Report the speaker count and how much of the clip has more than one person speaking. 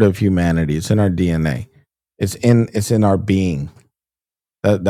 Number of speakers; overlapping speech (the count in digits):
1, no overlap